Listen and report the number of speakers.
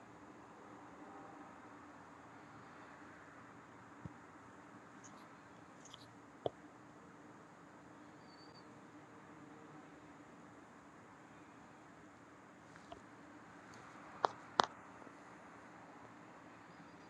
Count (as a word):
zero